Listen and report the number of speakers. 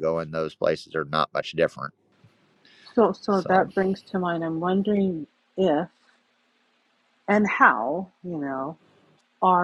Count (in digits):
2